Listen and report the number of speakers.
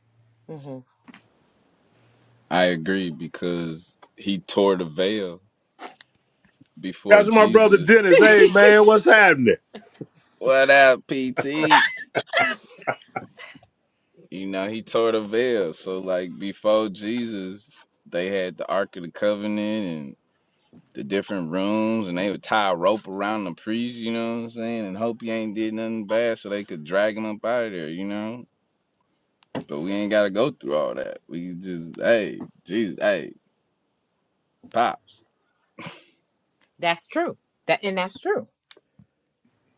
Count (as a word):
three